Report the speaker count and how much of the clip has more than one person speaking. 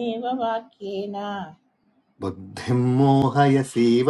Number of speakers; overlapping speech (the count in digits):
2, no overlap